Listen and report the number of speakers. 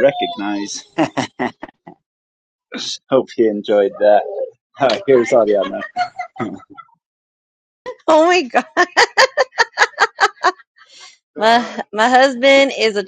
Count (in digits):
2